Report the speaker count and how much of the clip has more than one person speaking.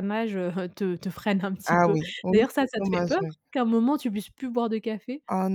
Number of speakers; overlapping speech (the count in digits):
2, about 30%